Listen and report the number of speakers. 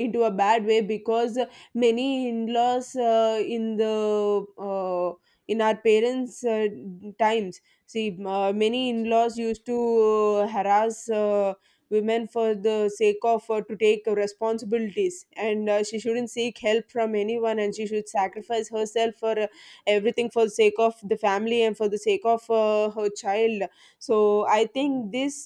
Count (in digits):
1